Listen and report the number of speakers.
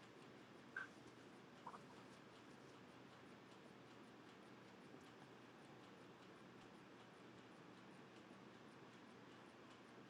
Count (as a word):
zero